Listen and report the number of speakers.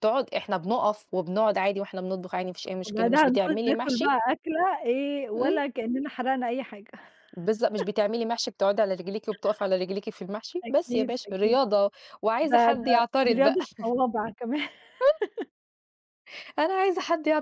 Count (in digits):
2